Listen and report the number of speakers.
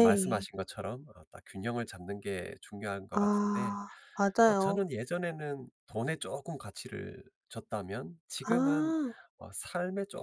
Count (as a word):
two